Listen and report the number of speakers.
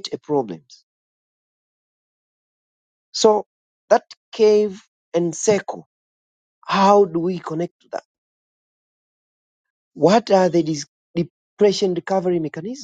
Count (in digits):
1